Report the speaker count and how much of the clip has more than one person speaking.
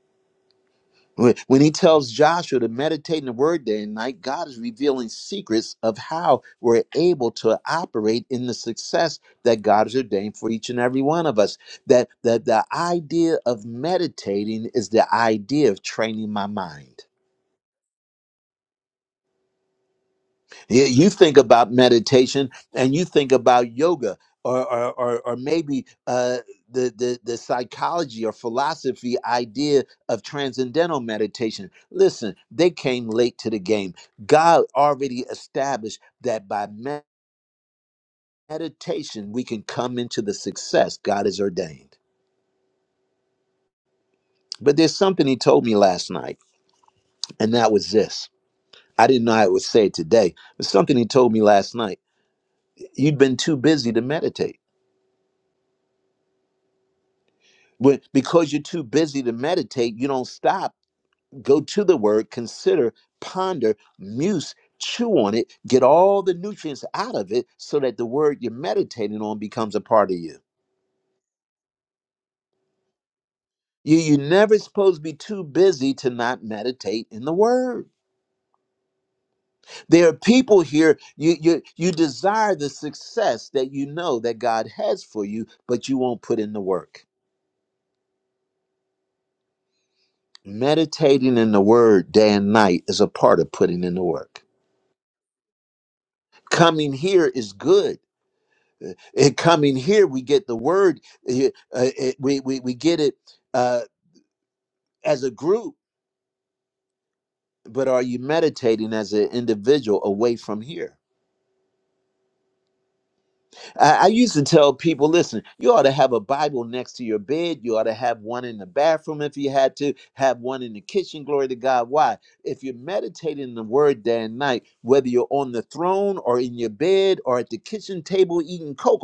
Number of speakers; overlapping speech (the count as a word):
one, no overlap